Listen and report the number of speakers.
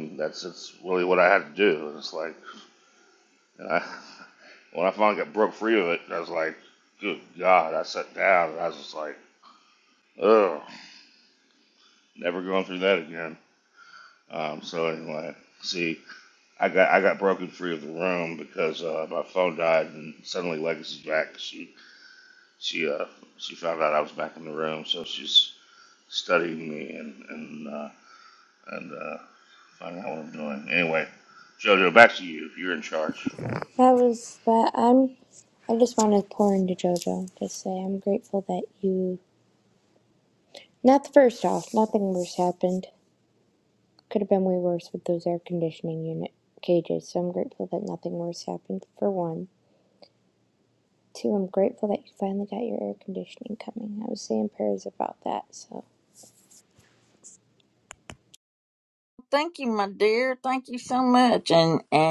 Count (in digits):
3